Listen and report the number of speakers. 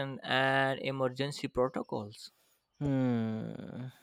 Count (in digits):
2